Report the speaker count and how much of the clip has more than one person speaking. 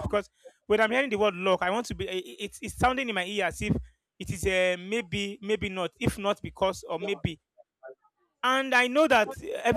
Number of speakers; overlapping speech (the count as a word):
one, no overlap